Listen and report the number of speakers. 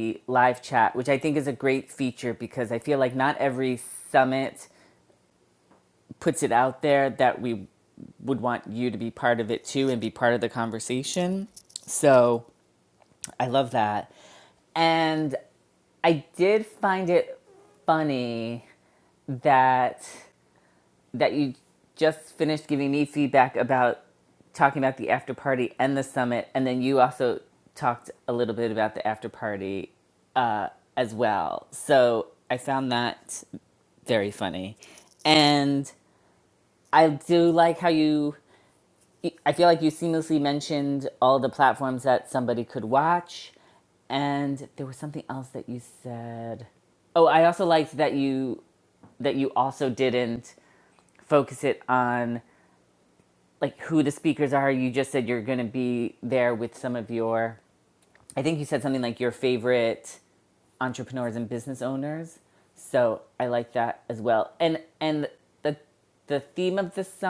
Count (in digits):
1